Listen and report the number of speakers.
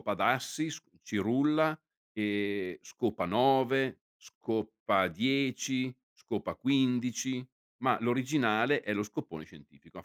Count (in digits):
1